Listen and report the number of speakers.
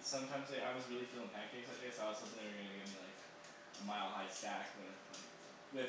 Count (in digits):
1